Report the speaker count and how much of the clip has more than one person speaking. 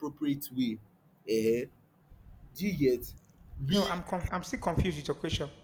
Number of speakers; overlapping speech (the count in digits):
2, about 4%